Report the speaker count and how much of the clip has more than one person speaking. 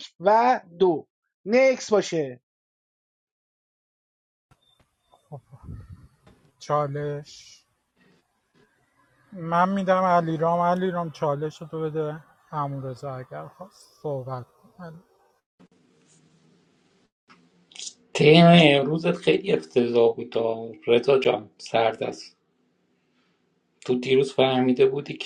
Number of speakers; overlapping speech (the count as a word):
three, no overlap